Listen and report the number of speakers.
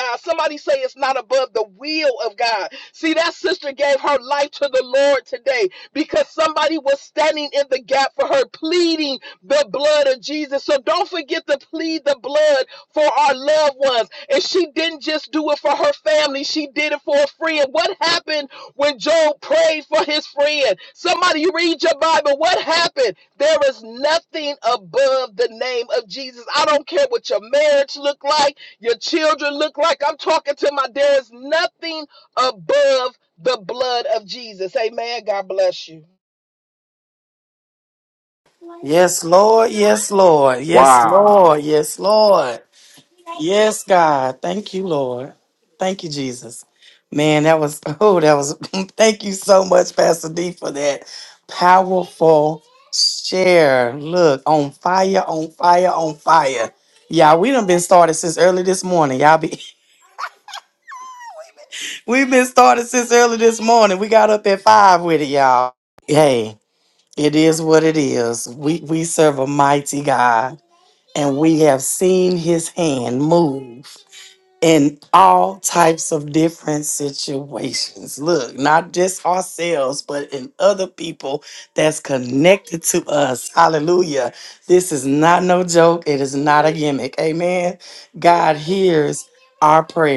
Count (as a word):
two